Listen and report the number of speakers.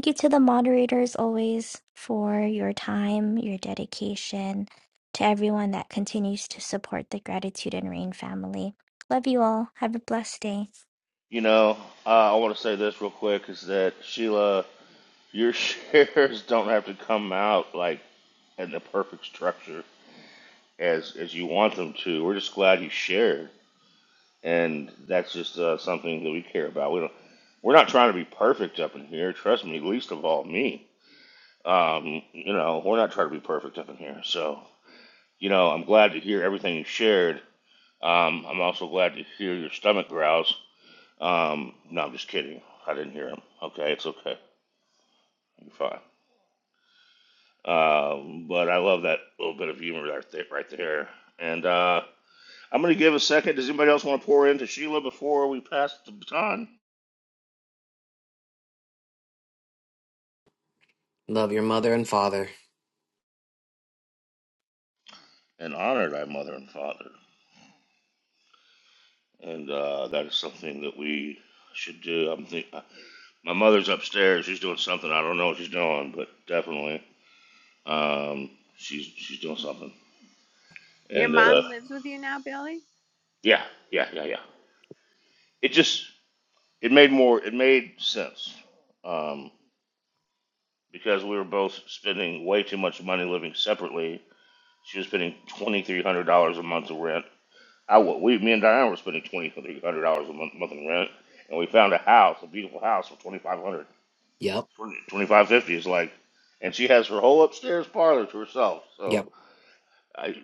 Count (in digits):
4